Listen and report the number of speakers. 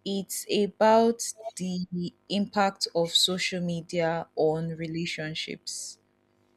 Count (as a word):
one